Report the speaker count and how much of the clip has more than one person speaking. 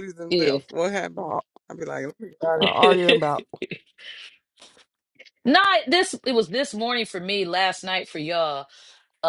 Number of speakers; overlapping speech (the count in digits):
3, about 6%